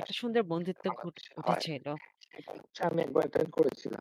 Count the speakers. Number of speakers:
two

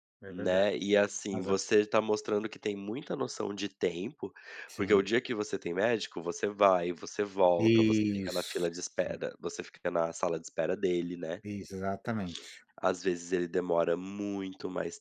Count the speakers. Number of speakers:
two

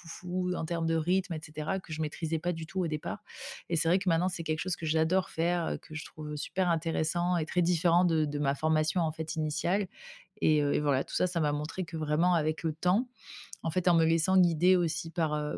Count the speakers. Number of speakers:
one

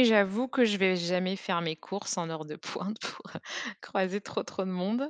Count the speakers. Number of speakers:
one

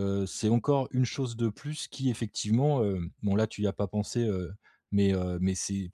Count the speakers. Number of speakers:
one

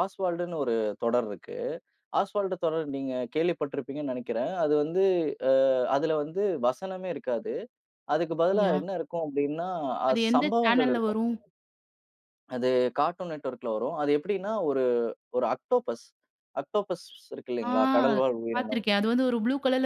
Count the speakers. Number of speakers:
two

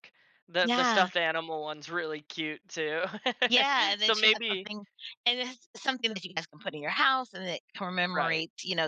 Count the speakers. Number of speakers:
two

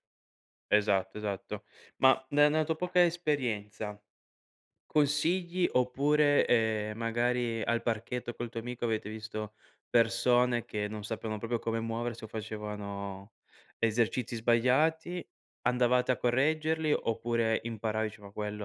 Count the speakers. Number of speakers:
one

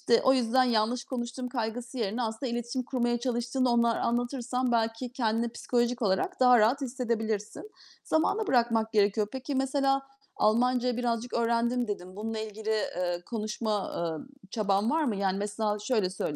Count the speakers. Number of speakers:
one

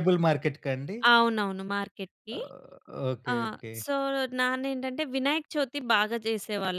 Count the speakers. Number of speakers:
two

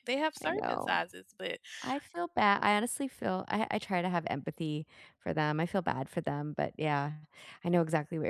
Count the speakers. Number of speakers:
two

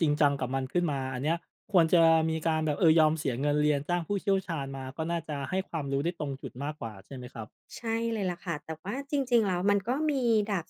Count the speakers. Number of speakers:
two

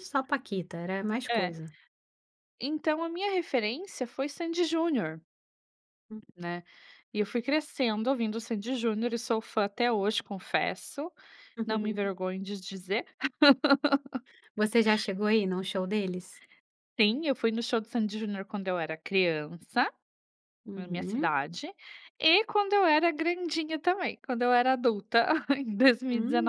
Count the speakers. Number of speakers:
two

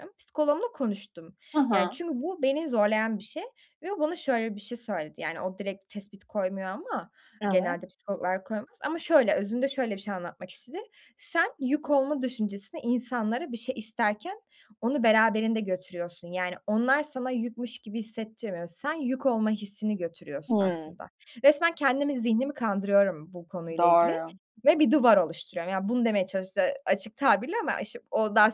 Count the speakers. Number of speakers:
two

